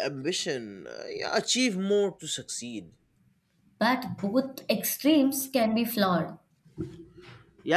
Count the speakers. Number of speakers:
2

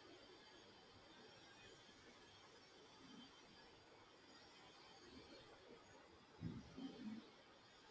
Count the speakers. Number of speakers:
0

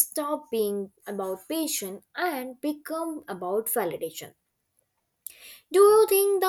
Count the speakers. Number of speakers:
1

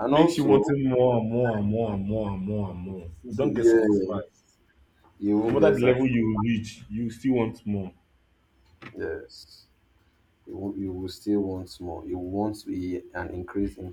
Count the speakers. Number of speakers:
2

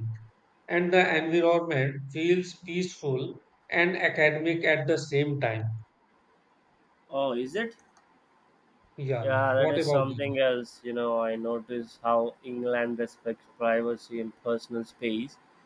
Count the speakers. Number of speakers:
2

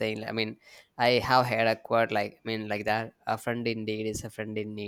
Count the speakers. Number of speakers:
1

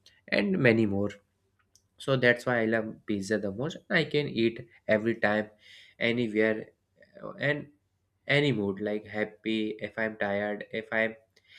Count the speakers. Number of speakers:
1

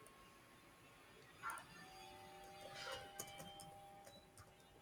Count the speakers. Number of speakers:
0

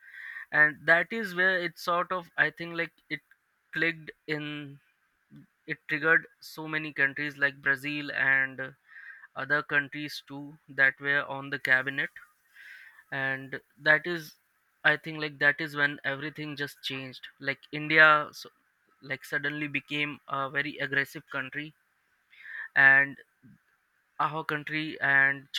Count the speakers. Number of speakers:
1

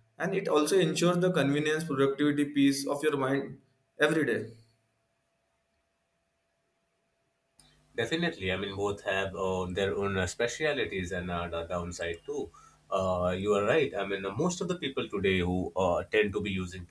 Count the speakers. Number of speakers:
2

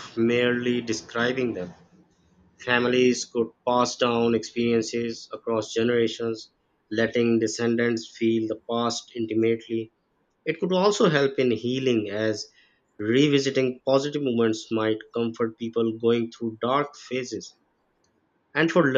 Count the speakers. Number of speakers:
1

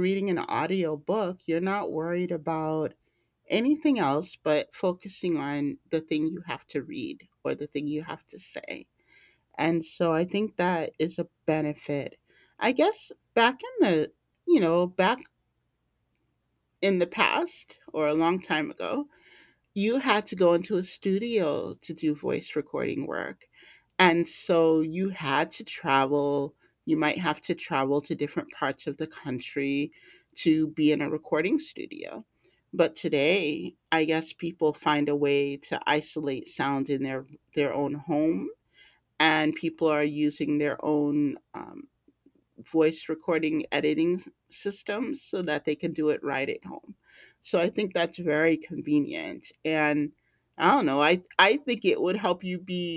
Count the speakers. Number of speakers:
1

